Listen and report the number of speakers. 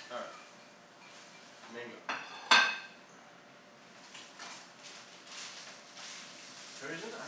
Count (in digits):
1